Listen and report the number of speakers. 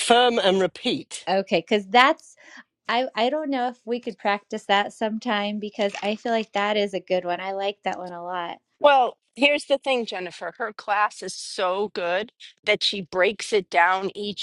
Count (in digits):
3